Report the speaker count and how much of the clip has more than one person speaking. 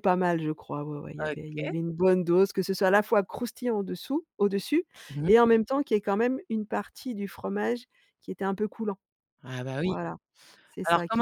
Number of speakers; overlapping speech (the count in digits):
2, about 10%